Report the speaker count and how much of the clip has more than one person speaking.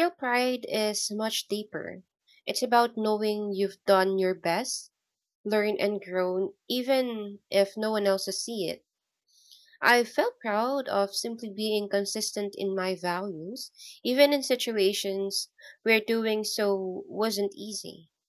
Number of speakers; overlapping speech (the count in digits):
1, no overlap